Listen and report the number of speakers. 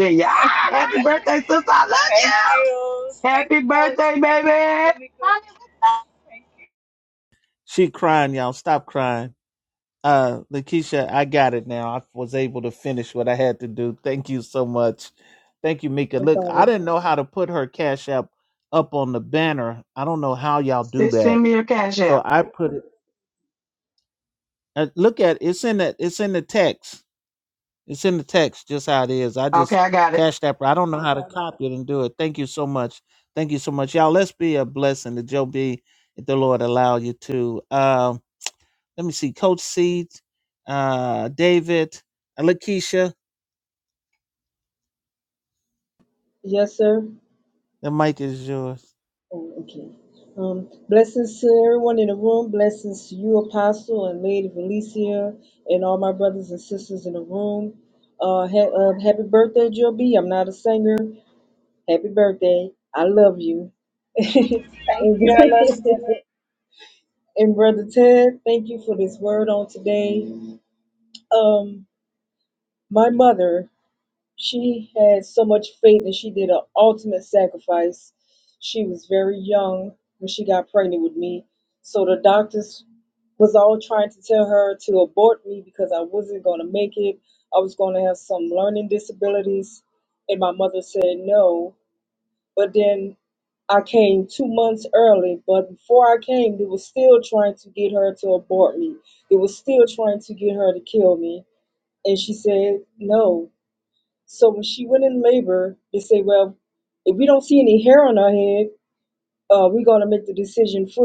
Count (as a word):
four